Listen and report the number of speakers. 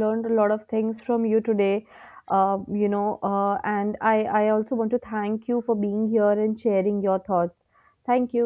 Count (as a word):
one